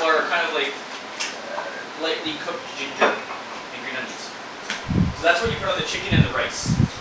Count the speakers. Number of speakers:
1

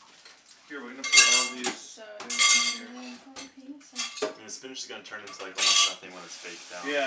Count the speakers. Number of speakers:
3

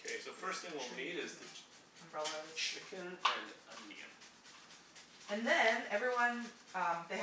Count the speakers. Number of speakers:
2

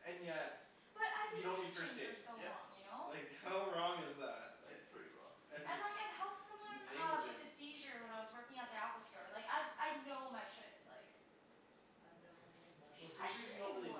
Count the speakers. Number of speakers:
3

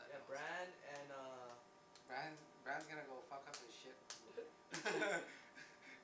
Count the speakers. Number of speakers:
2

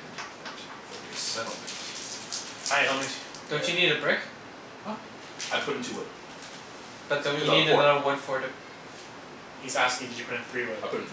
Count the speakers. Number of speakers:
3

